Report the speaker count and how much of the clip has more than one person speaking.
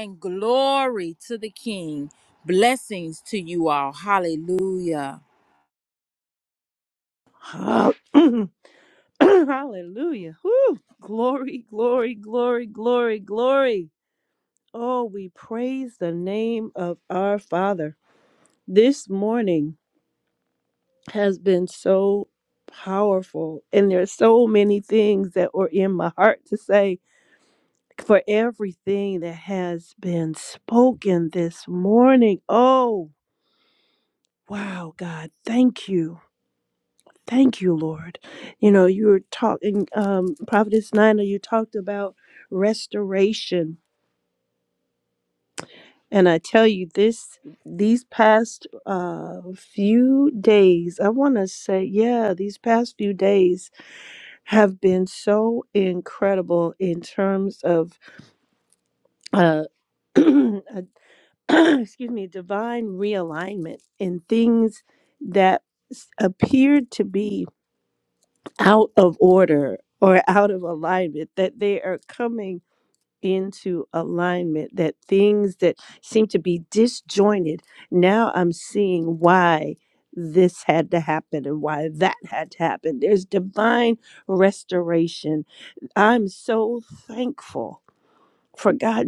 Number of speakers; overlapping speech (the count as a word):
two, no overlap